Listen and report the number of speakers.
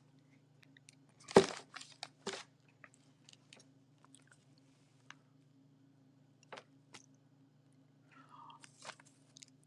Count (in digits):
0